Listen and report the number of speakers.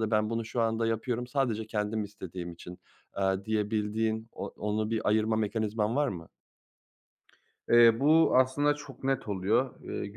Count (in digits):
2